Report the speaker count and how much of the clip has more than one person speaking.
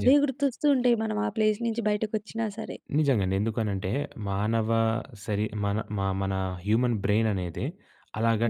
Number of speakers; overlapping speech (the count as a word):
two, about 2%